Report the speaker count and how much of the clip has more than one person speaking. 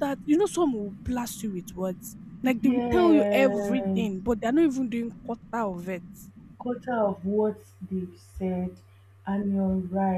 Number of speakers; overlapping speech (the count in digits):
2, about 10%